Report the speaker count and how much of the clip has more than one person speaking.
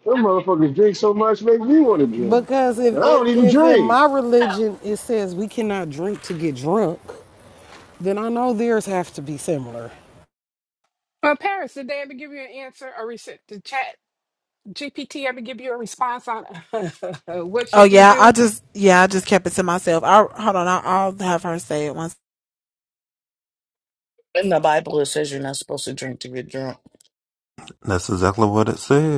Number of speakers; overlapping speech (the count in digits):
6, about 6%